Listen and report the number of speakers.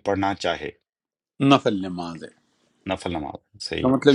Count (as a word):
two